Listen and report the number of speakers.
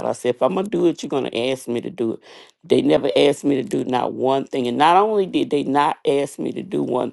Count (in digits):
1